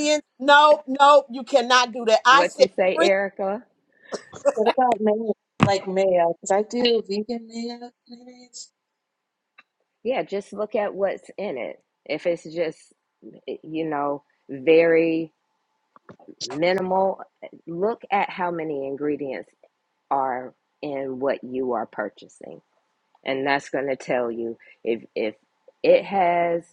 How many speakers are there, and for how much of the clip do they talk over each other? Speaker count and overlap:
3, about 3%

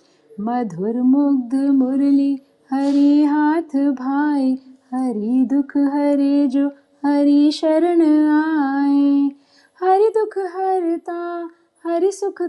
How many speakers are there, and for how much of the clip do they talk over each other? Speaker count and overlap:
1, no overlap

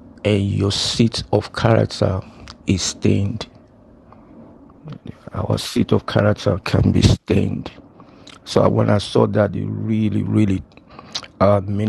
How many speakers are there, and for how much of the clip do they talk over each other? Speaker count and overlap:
1, no overlap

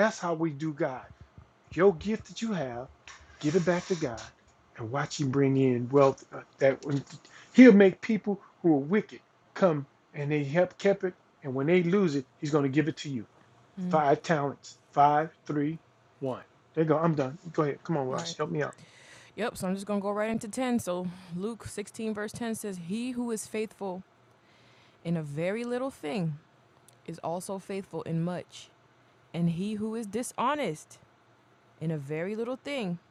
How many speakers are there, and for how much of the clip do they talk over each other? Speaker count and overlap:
2, about 1%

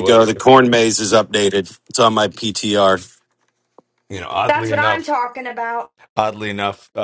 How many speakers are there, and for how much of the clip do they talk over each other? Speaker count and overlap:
3, about 15%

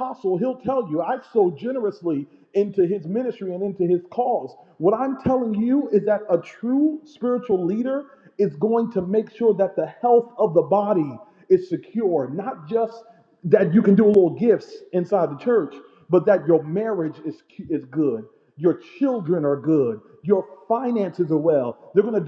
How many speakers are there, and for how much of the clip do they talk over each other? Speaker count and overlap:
1, no overlap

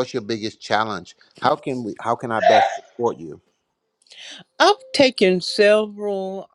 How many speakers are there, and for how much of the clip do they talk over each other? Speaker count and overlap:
2, no overlap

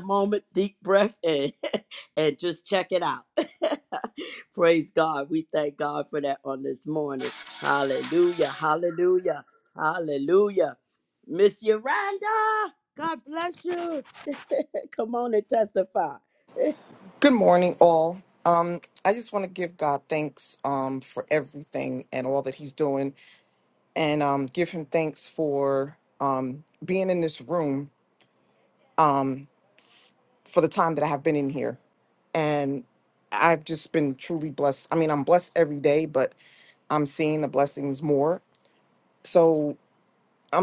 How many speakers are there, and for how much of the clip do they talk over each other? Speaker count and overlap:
2, no overlap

